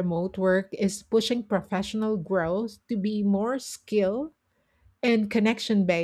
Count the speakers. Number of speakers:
1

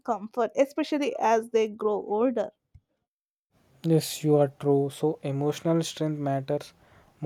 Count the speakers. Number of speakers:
2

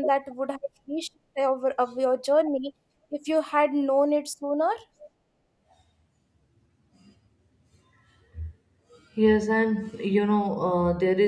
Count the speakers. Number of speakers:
2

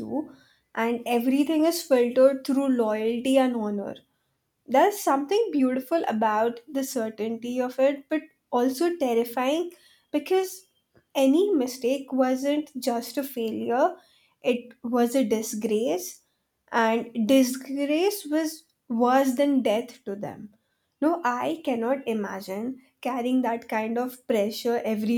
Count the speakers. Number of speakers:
1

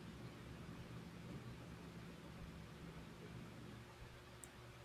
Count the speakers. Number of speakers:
0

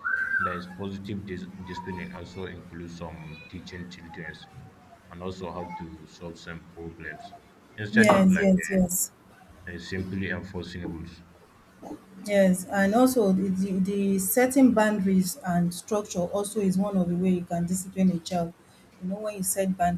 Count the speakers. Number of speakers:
2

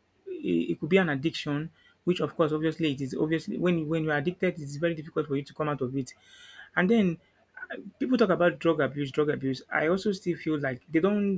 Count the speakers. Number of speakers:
1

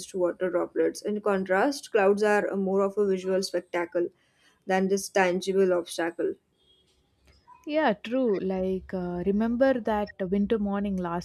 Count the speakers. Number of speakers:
2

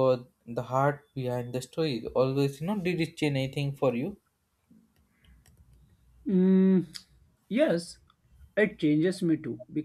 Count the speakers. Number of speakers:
2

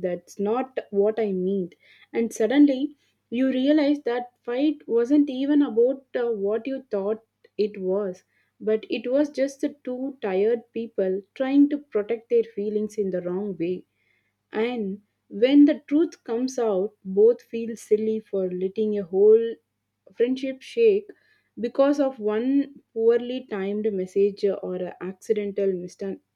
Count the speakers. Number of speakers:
1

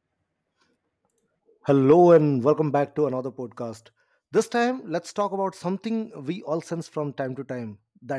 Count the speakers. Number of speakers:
1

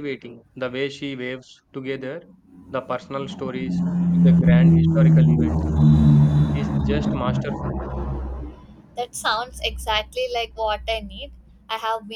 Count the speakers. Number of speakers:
2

